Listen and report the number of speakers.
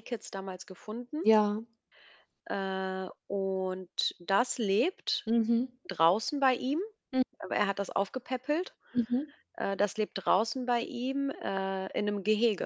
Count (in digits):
2